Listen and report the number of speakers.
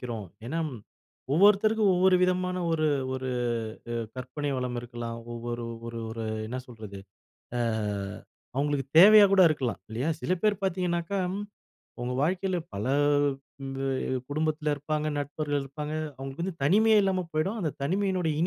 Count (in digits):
1